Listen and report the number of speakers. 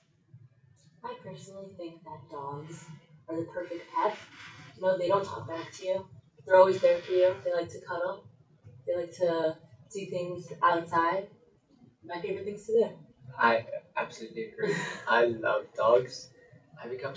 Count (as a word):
two